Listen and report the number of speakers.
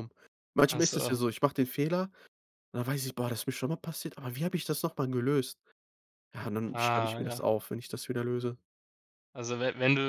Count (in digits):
2